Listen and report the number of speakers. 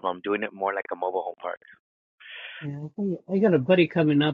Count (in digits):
2